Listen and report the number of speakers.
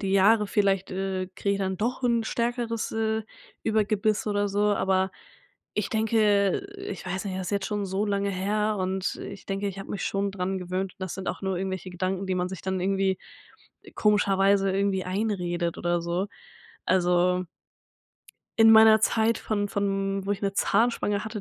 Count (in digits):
1